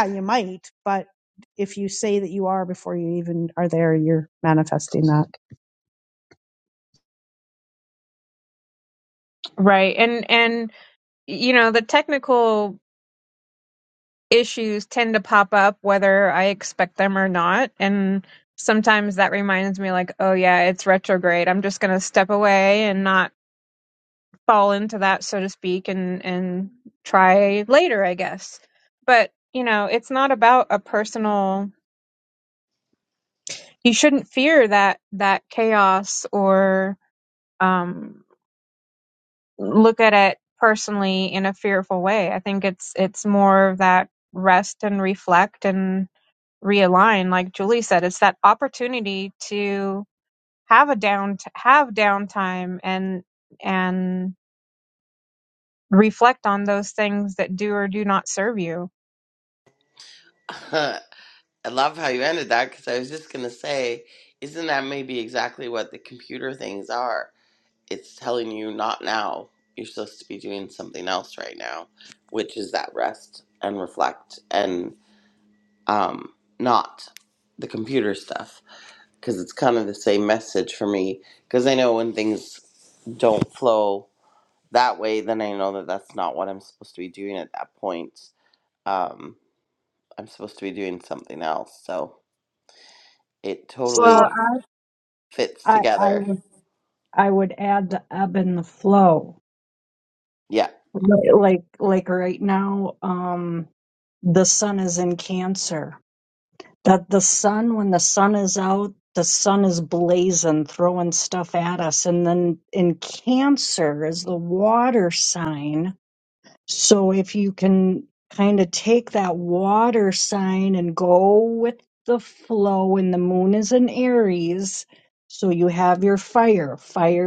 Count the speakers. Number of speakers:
4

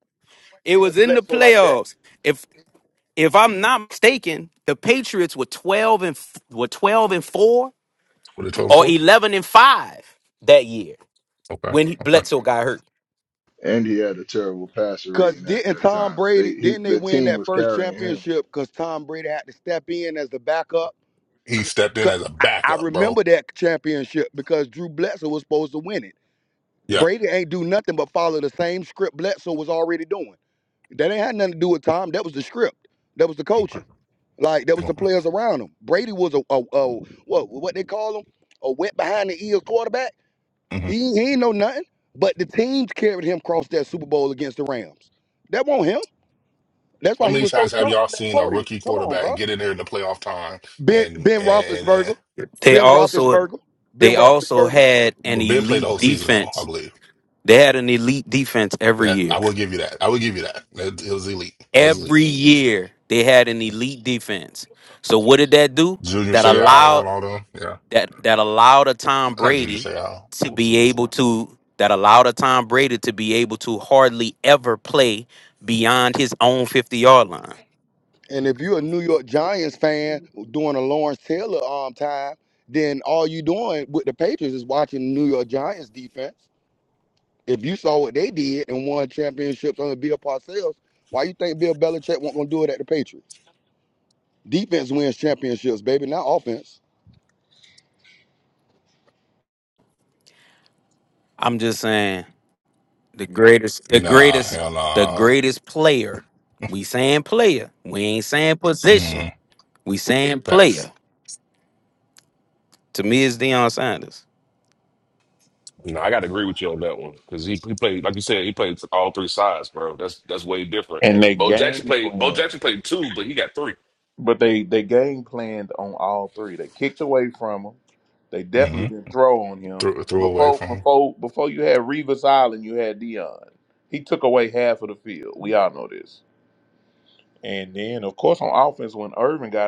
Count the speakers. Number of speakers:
6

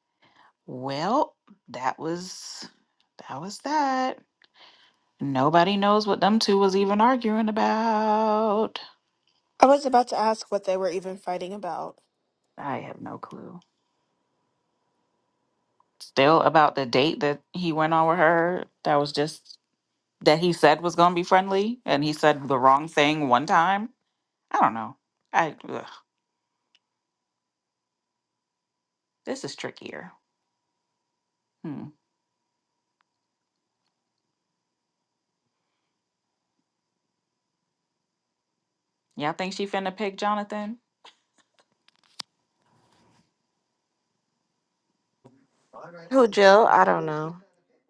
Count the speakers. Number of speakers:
3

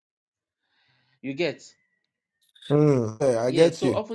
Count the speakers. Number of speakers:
2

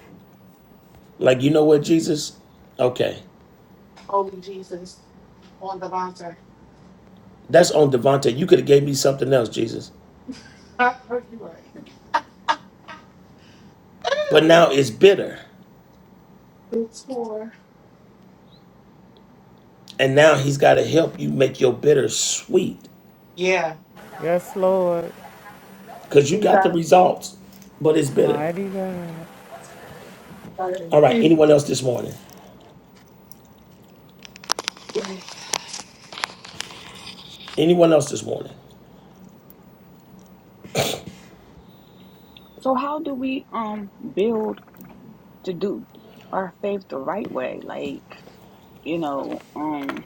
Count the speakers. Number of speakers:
4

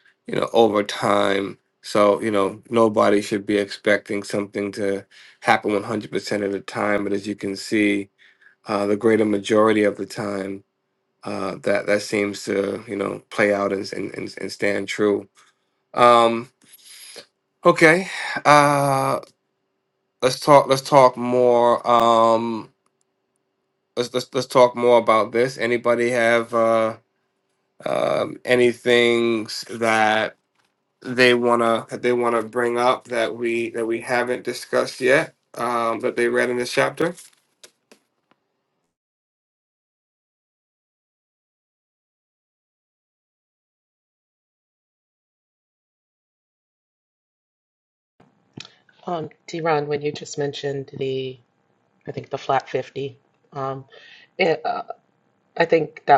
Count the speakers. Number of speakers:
2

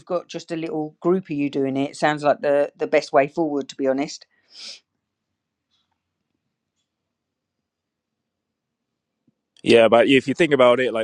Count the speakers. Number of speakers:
2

